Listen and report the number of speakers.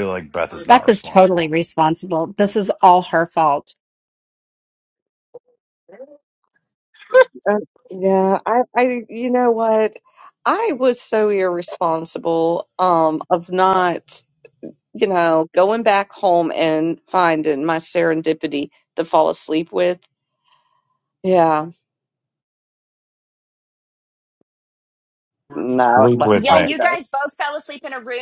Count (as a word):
four